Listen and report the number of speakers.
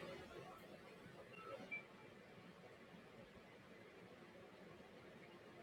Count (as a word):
zero